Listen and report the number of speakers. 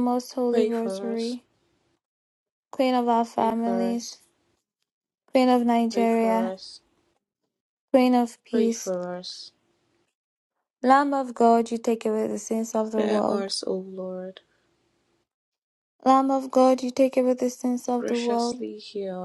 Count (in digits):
2